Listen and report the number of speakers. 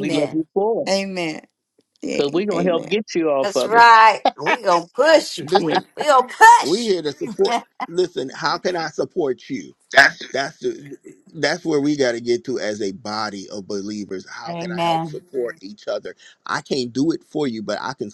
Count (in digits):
4